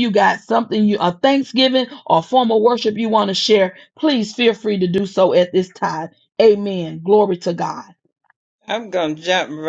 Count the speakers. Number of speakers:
two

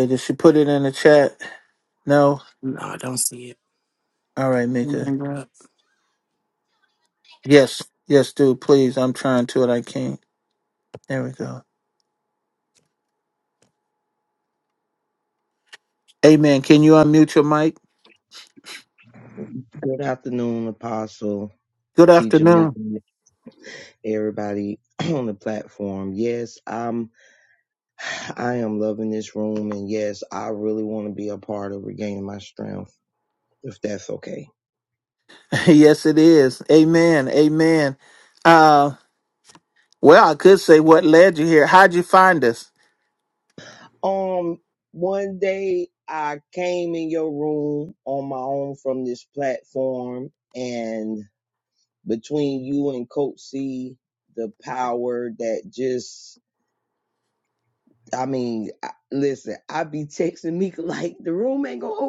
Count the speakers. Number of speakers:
three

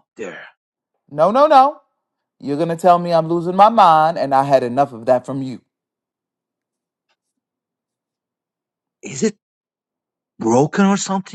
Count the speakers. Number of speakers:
two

